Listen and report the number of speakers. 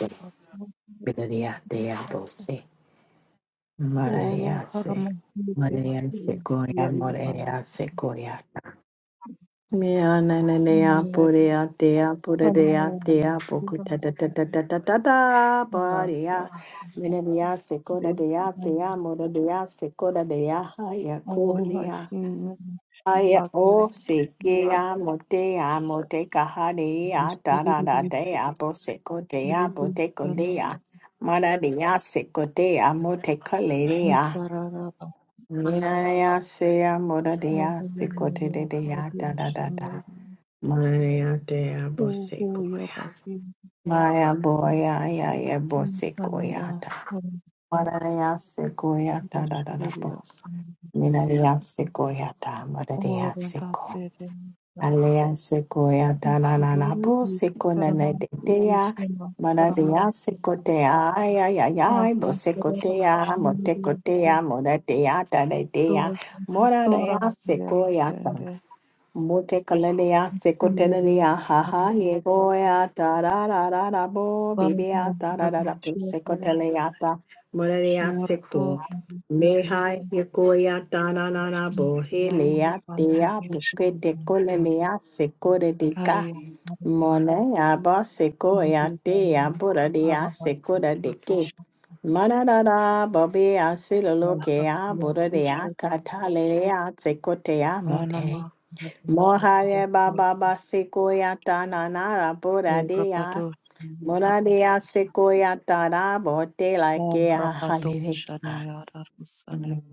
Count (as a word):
two